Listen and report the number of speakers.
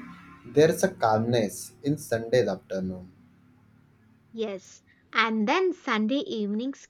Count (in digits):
2